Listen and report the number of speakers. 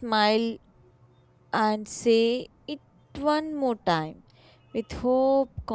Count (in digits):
1